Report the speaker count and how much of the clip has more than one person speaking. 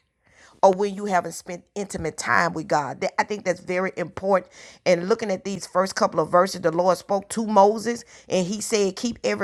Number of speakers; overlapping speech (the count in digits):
1, no overlap